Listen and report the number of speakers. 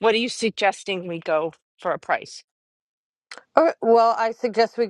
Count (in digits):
2